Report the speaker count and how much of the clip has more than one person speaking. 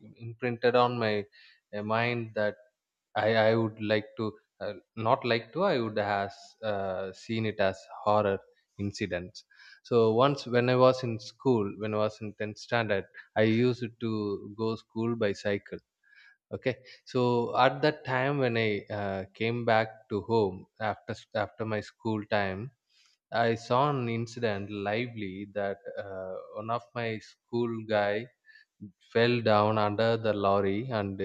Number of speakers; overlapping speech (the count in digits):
1, no overlap